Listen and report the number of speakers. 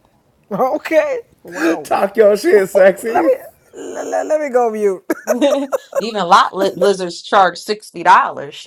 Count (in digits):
3